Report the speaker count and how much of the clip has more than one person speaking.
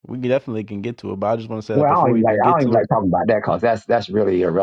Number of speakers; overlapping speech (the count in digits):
2, about 24%